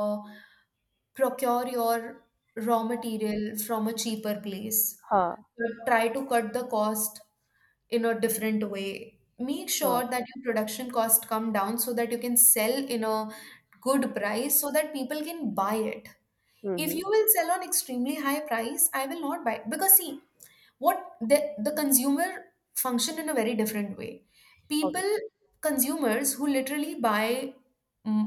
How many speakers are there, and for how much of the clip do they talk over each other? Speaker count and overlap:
two, about 2%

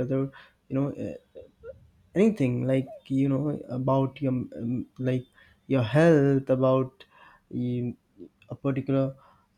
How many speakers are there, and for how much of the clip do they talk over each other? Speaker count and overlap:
one, no overlap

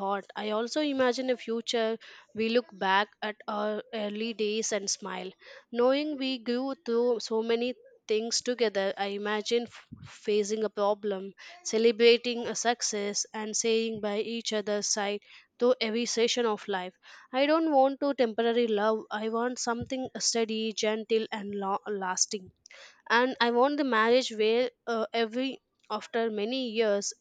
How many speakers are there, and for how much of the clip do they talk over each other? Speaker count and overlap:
one, no overlap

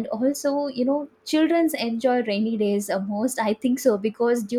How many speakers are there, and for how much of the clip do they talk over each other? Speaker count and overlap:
one, no overlap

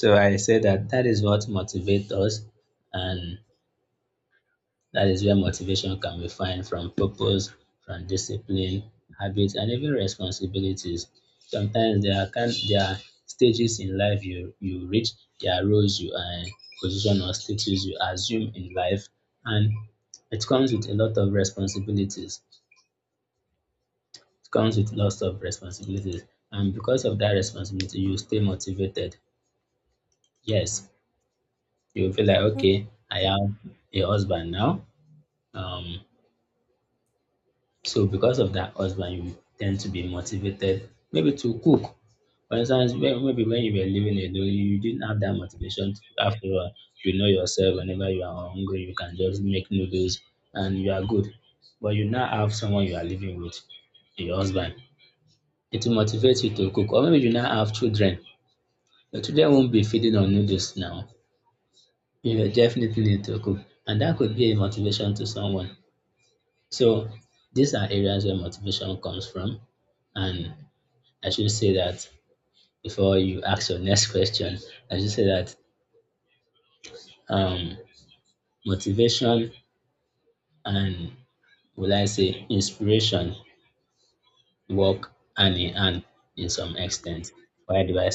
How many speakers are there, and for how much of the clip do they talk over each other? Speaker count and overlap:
one, no overlap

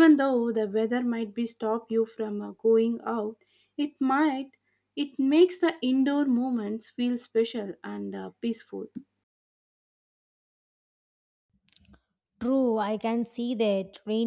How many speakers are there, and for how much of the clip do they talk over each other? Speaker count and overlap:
two, no overlap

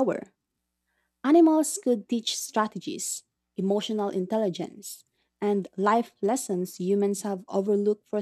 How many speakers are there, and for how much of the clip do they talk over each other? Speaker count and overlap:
one, no overlap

